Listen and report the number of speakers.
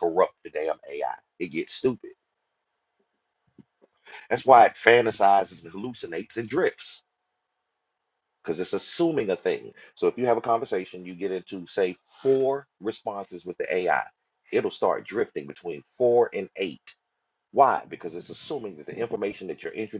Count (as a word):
one